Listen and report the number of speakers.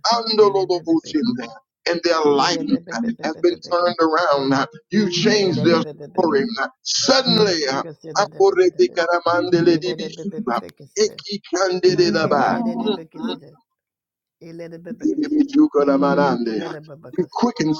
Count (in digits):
2